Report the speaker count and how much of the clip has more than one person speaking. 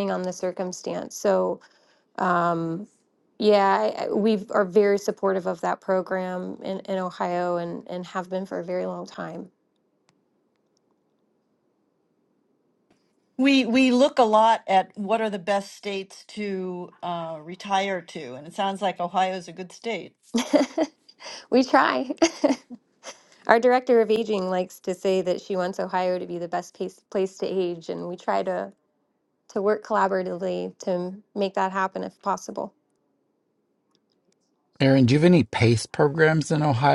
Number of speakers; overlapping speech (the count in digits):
3, no overlap